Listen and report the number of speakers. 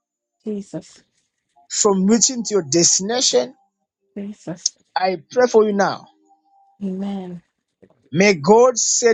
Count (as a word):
two